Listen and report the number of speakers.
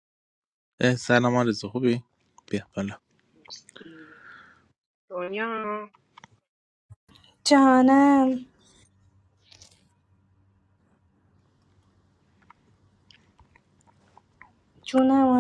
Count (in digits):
3